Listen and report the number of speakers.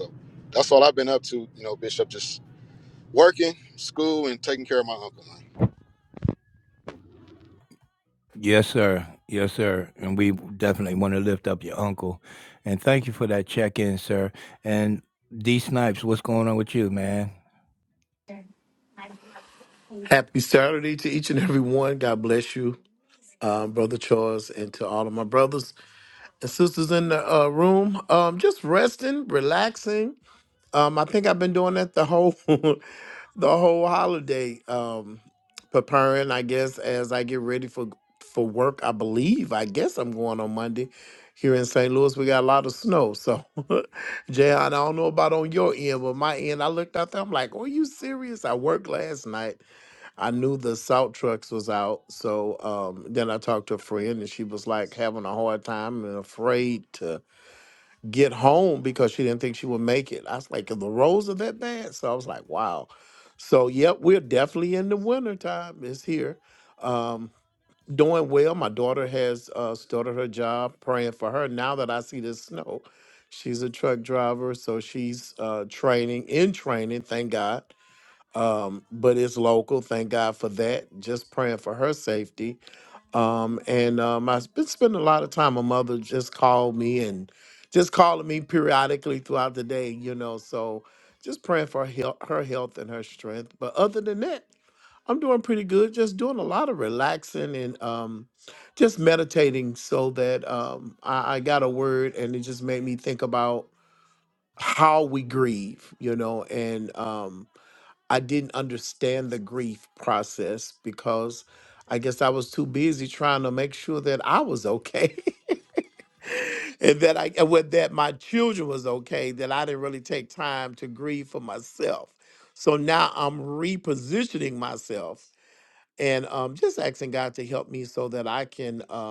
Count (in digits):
3